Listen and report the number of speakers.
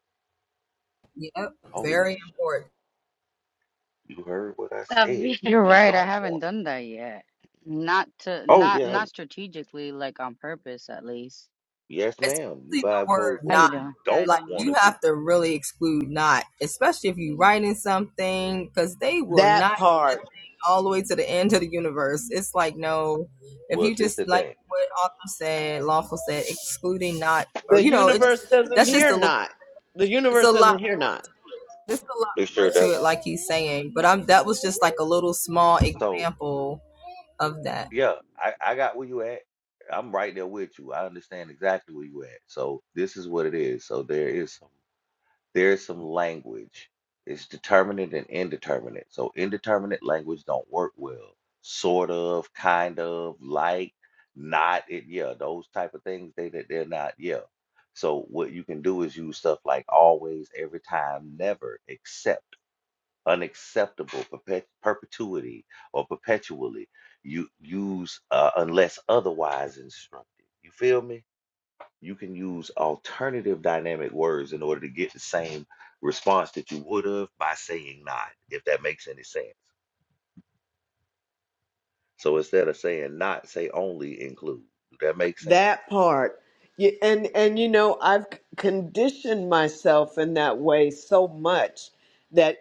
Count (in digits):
4